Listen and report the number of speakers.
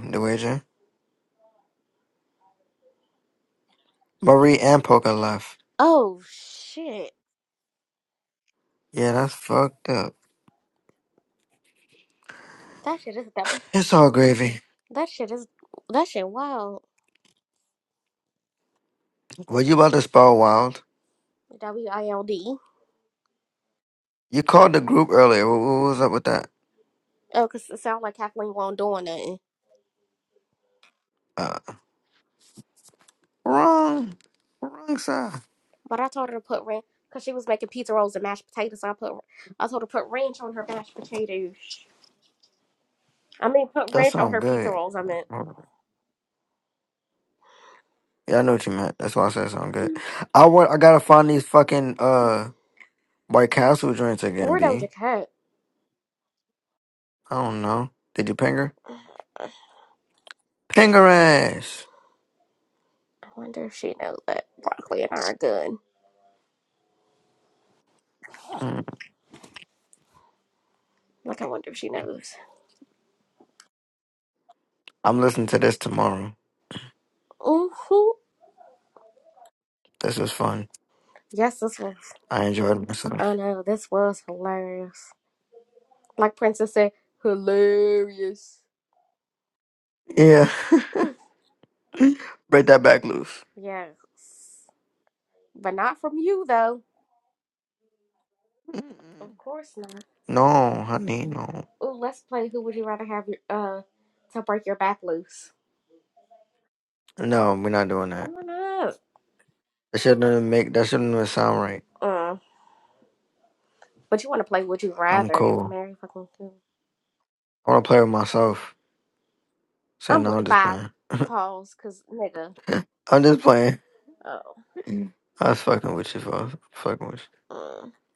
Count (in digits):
2